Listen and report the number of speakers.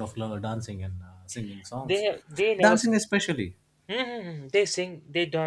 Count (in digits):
2